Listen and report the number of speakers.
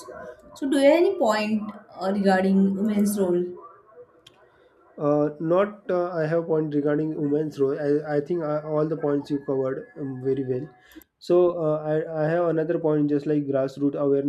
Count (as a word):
two